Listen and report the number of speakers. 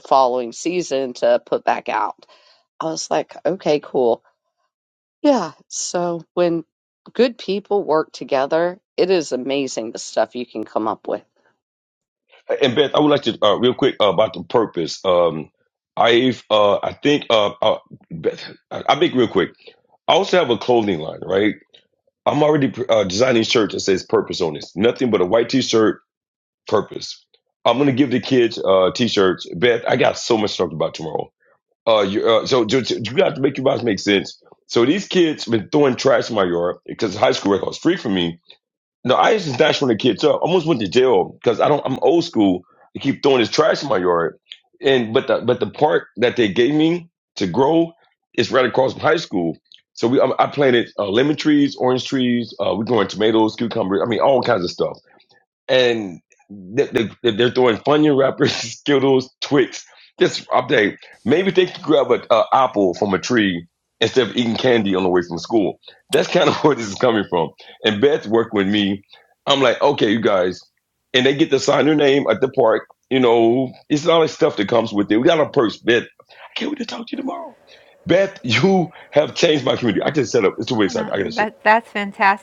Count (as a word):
three